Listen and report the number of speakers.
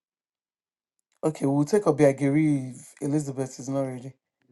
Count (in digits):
1